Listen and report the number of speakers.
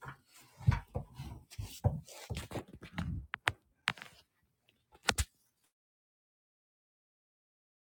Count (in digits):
0